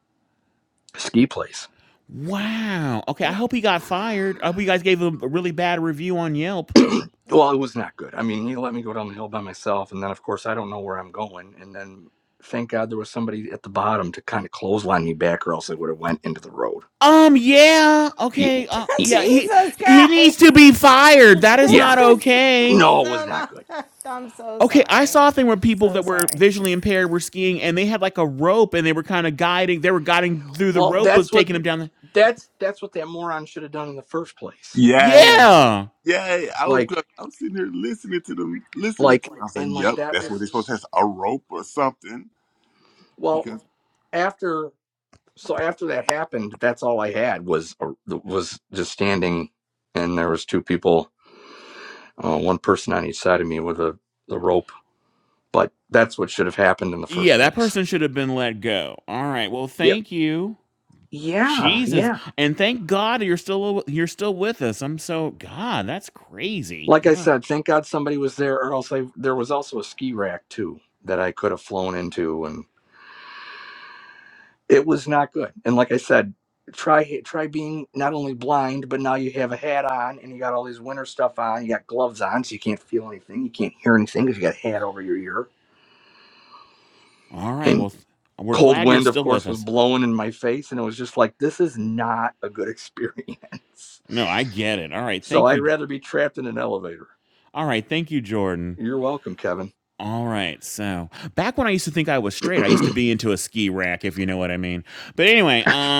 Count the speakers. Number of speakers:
4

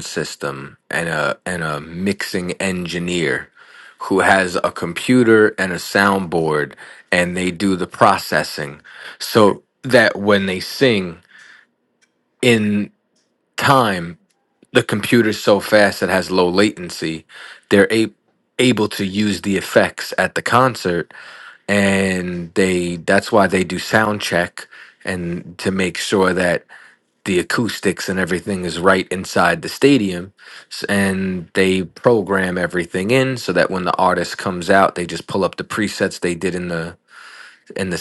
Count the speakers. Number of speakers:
1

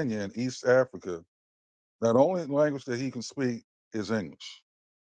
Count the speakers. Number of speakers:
1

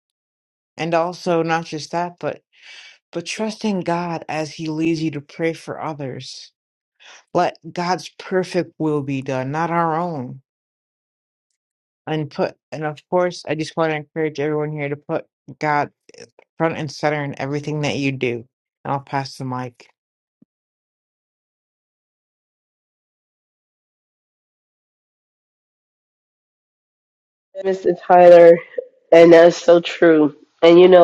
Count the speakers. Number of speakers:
2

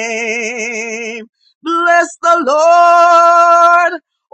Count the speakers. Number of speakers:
1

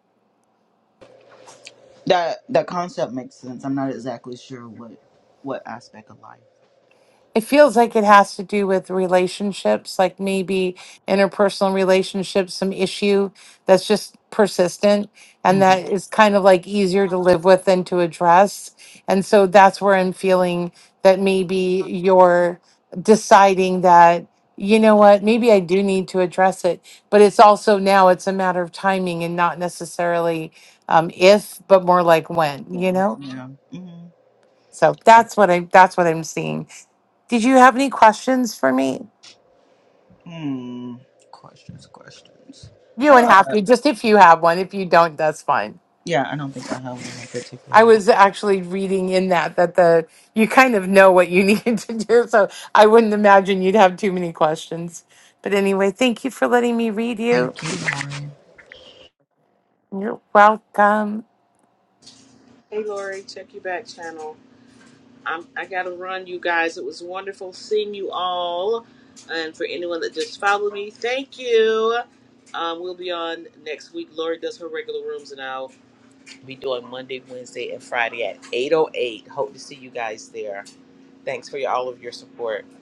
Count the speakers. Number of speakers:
3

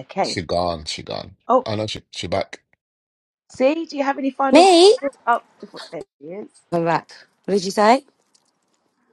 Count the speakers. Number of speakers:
3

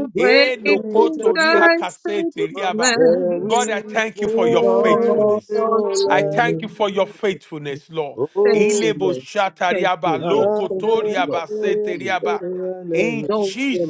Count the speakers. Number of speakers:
3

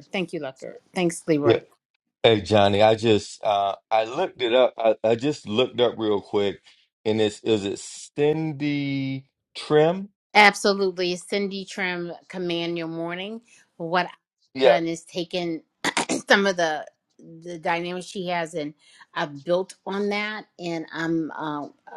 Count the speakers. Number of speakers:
2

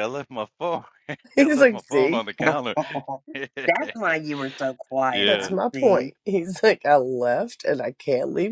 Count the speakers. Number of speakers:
3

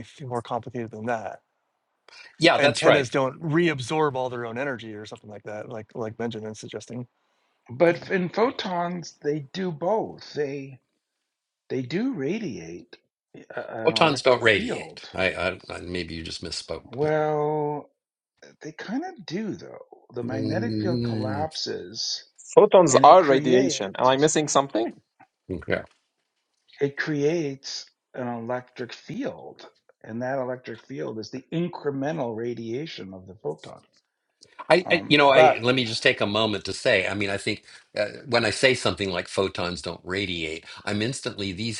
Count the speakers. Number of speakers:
4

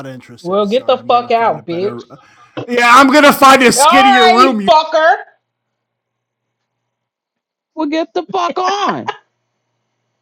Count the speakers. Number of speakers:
3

